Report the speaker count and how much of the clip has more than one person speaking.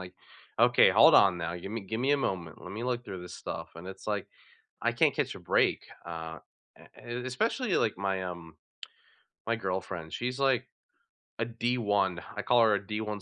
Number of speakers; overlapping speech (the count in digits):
1, no overlap